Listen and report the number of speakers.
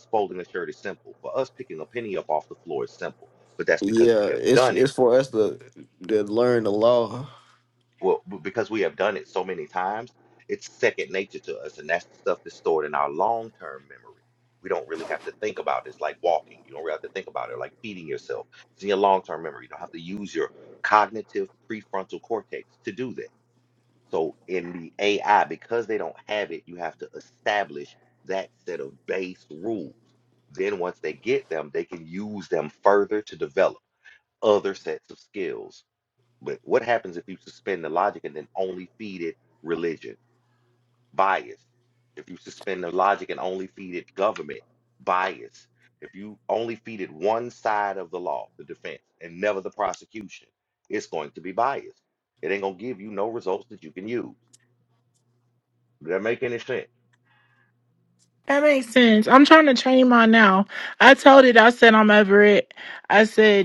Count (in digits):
3